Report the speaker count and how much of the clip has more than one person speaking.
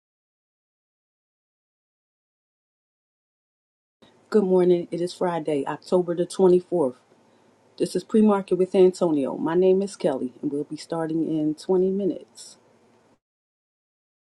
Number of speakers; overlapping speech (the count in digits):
1, no overlap